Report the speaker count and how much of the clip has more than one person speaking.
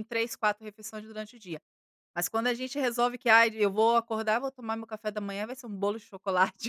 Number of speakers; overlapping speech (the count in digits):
1, no overlap